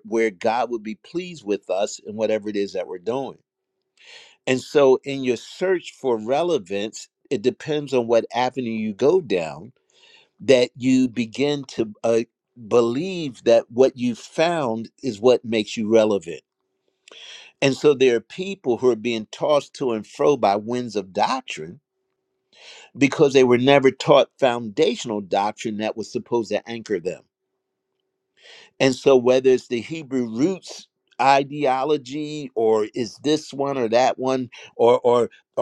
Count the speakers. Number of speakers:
one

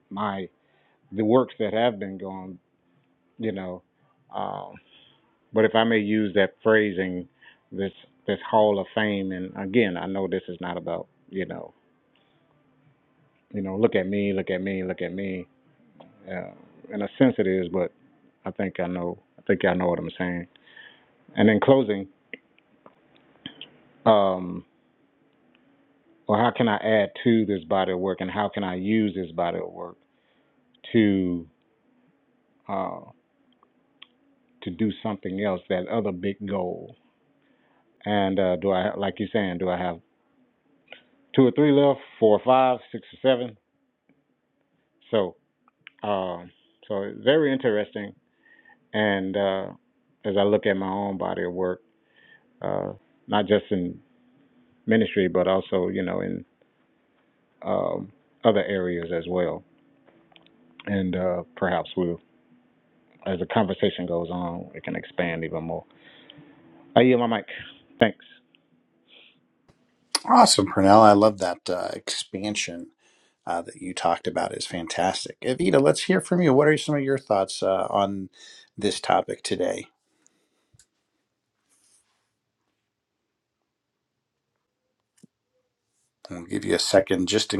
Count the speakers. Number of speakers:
two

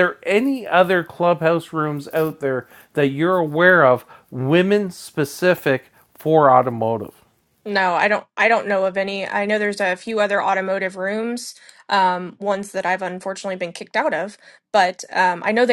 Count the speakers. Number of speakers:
two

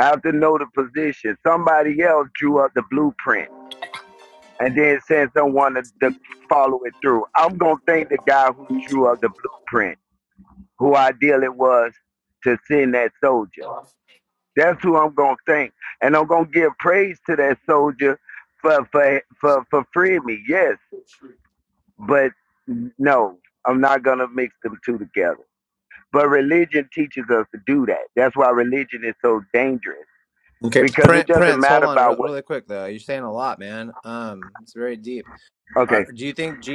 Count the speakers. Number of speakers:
two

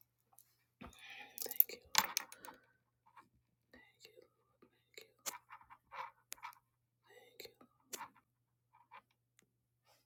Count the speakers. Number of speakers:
zero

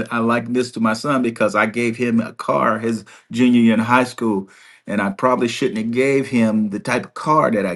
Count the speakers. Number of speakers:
one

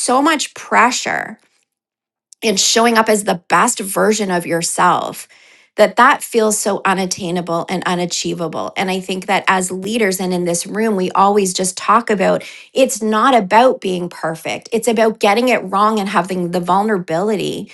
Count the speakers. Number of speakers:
one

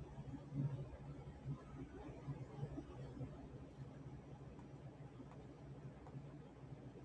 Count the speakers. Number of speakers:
zero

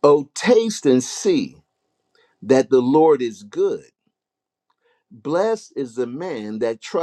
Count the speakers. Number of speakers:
one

